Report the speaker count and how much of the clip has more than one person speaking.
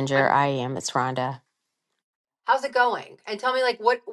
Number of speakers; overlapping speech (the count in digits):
2, about 1%